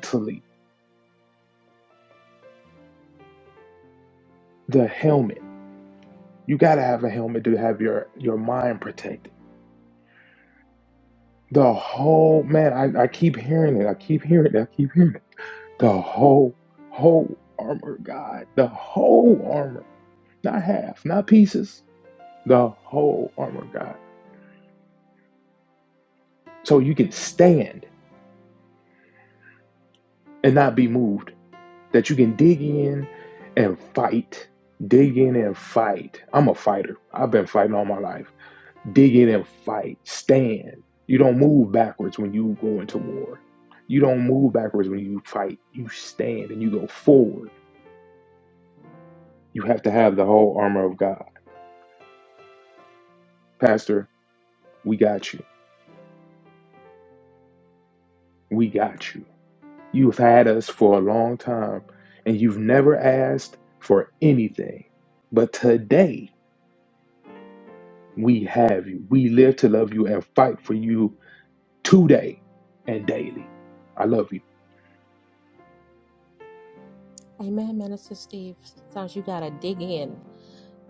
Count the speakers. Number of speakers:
two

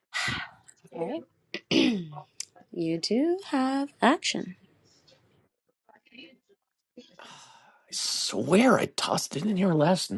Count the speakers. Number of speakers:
two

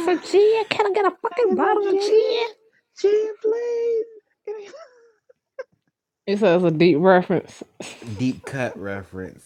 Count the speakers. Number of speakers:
three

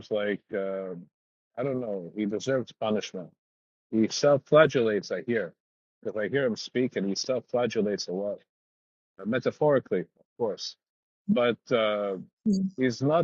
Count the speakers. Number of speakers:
one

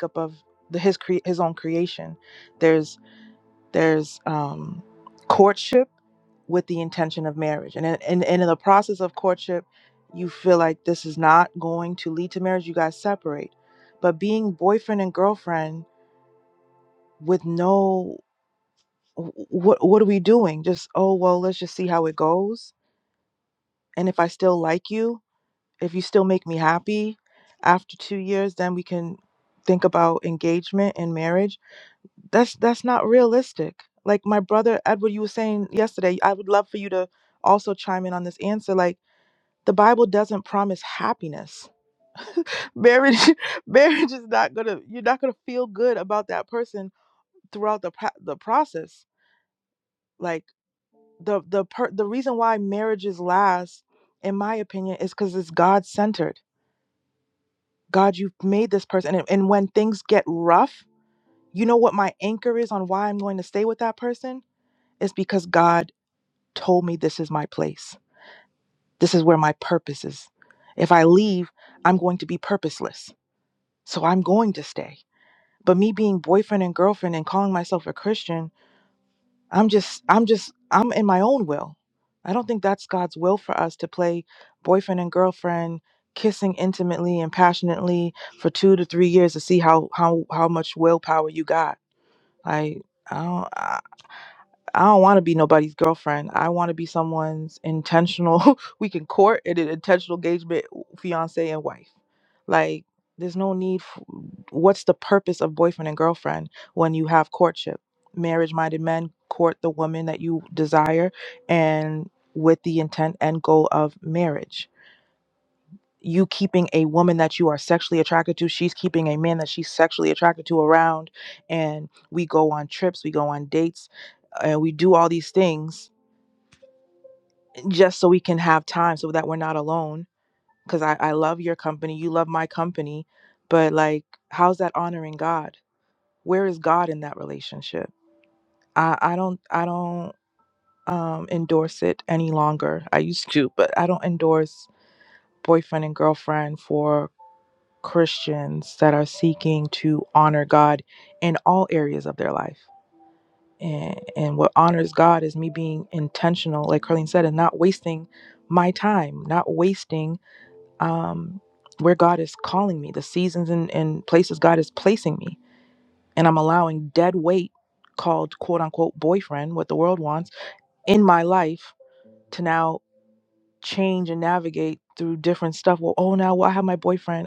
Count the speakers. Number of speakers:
one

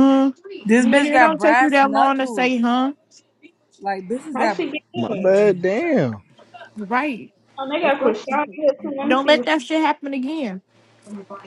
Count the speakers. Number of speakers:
four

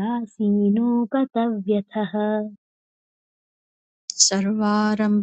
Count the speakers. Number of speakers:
two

